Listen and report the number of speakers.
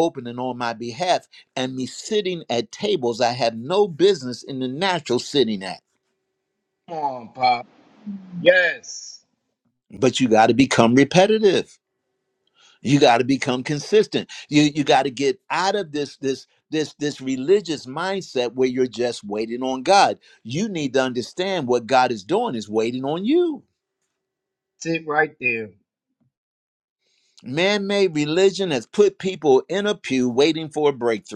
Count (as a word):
two